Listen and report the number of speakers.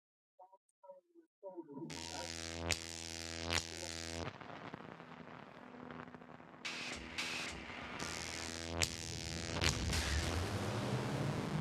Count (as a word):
zero